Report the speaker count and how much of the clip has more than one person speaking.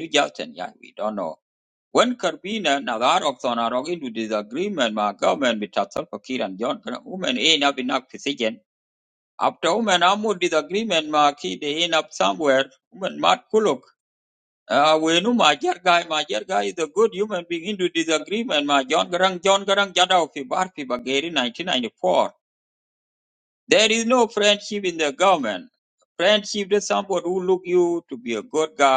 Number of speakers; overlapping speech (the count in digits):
1, no overlap